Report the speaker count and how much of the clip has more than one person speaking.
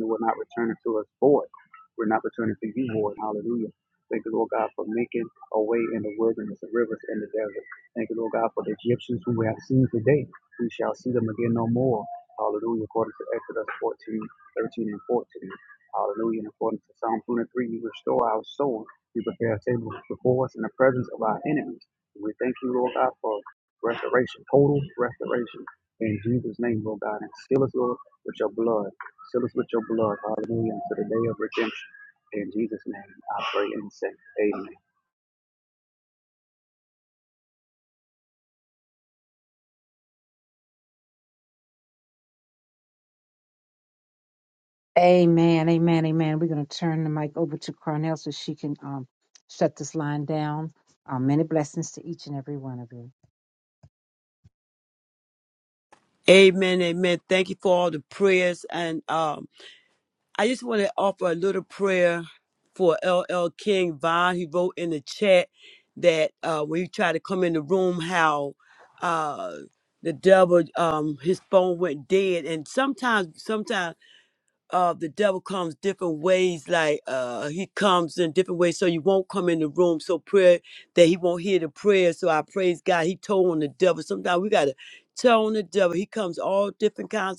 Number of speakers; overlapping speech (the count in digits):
3, no overlap